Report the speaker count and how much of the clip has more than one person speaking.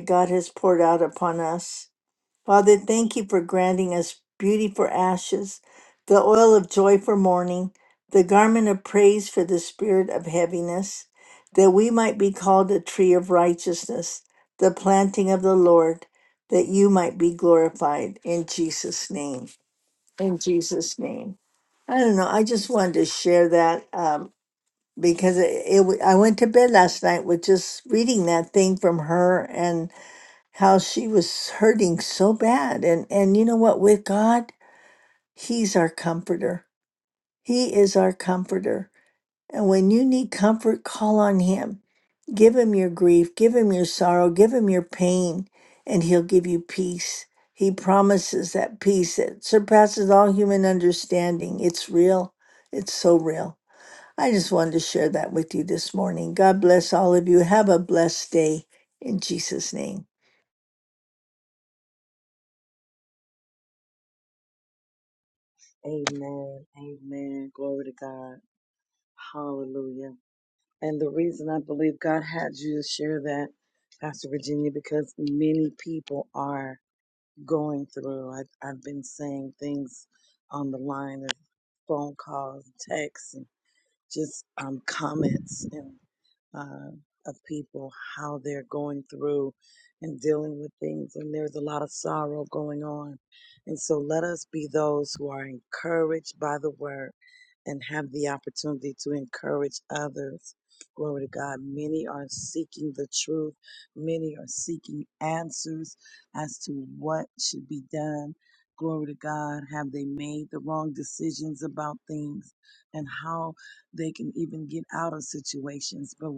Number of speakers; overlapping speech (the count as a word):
two, no overlap